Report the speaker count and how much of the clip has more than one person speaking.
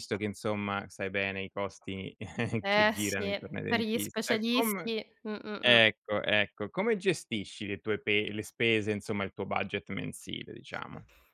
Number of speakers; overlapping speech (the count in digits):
2, about 21%